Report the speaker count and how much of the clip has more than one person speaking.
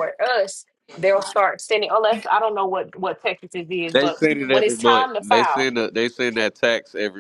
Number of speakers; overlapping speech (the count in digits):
2, about 19%